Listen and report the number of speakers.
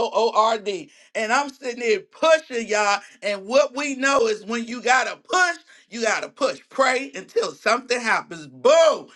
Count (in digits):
1